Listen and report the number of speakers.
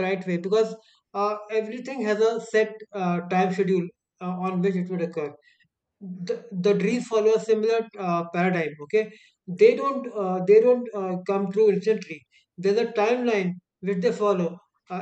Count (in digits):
1